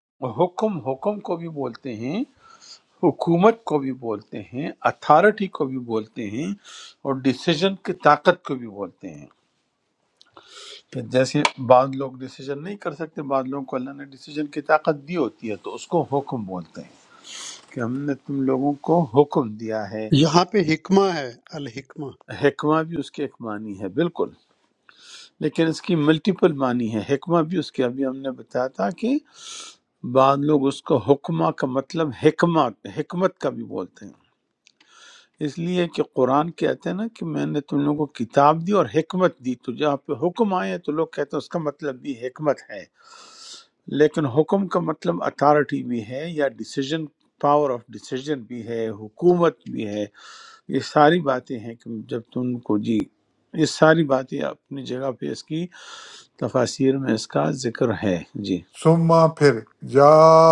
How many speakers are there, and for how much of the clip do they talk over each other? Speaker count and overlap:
three, no overlap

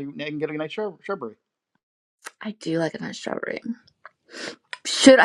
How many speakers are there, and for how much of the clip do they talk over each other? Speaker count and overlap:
two, no overlap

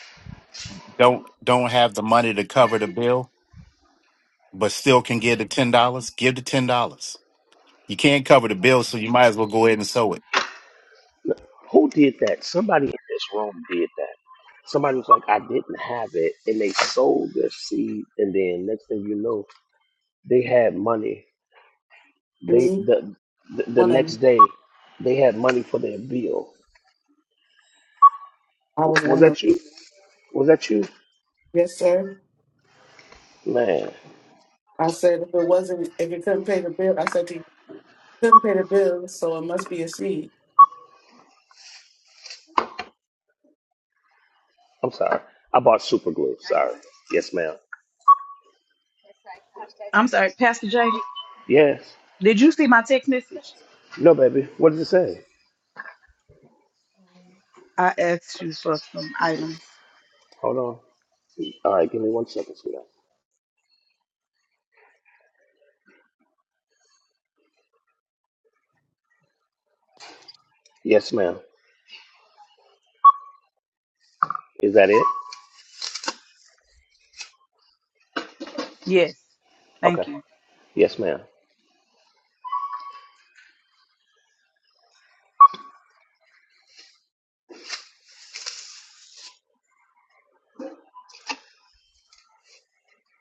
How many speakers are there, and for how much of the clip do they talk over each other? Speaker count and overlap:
four, about 2%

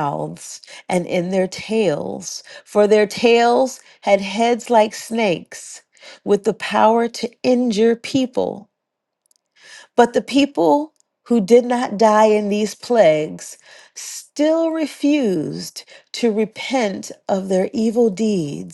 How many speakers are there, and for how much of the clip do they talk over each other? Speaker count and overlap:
one, no overlap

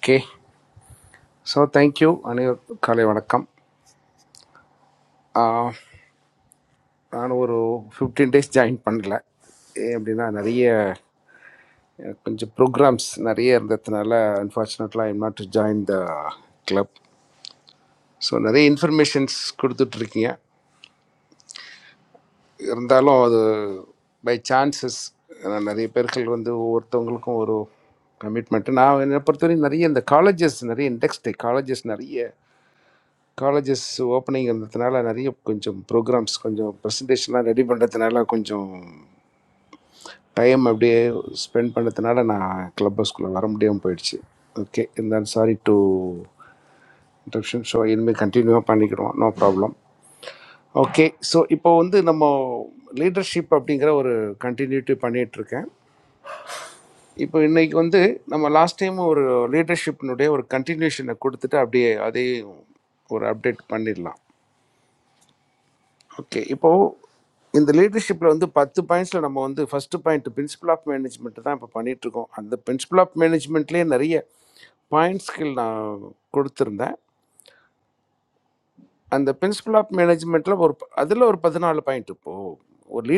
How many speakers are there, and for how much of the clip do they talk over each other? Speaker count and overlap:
one, no overlap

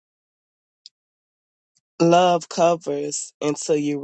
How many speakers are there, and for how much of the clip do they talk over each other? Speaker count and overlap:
one, no overlap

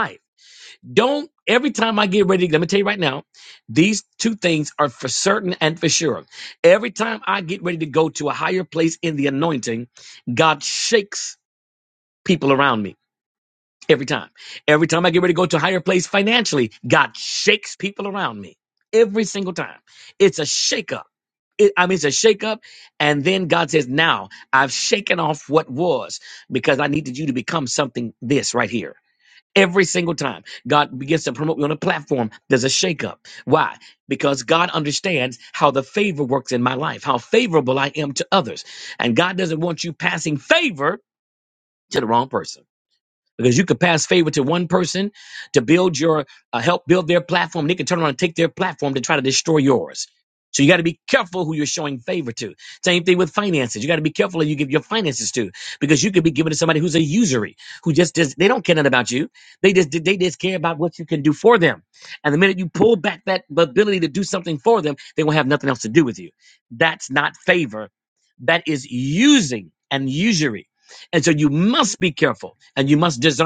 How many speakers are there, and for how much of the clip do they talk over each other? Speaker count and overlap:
one, no overlap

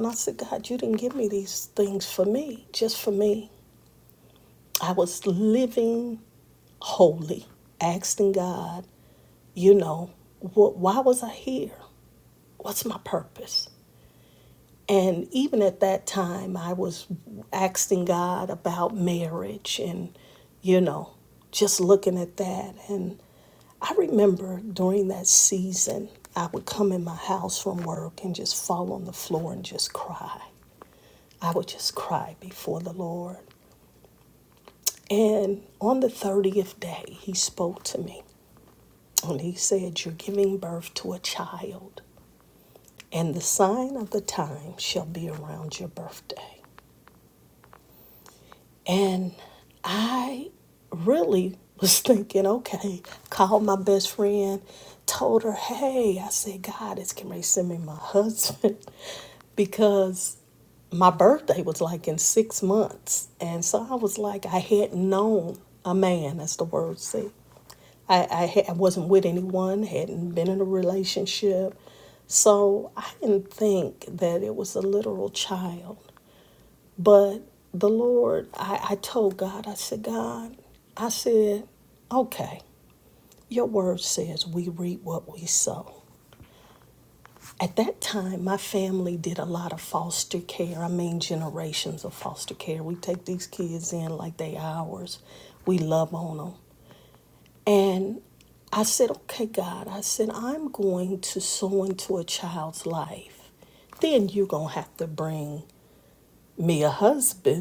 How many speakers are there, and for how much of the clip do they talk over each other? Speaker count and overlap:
one, no overlap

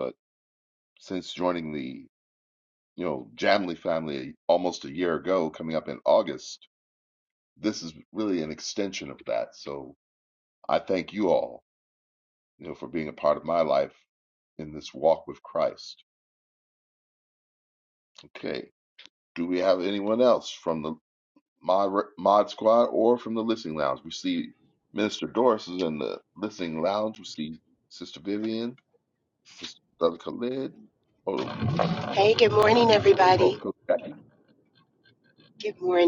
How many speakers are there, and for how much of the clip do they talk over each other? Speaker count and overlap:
two, about 1%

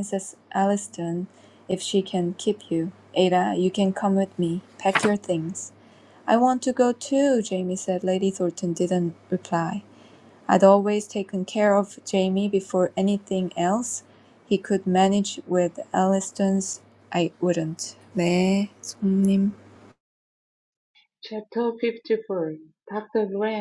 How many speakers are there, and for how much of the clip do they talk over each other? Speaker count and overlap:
two, no overlap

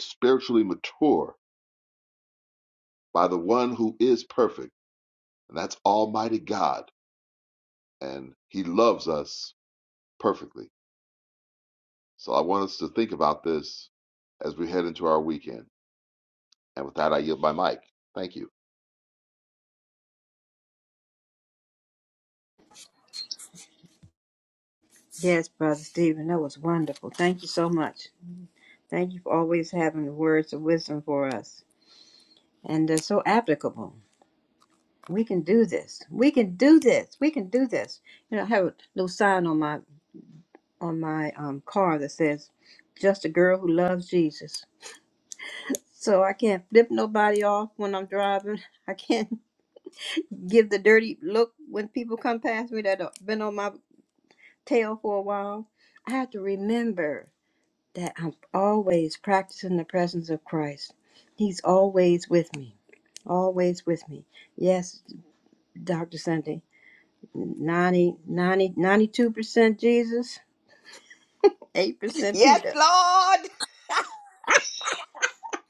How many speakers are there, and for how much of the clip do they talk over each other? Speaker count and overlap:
three, about 1%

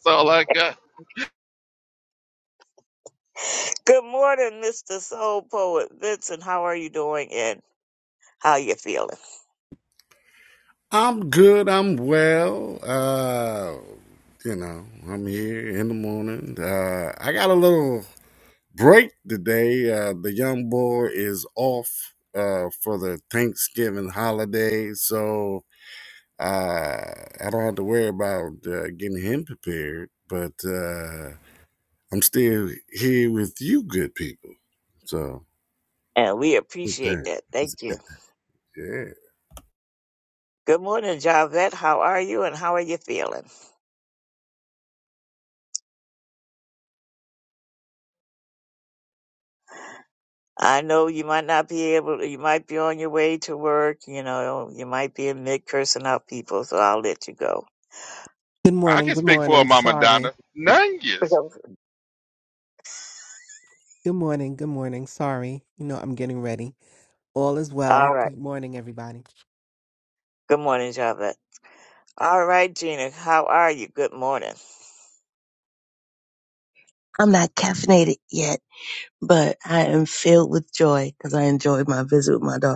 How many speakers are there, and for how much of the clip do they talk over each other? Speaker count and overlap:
five, about 3%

